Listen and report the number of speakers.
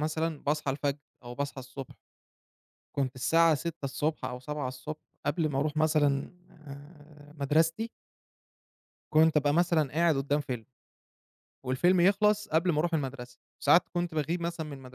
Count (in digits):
1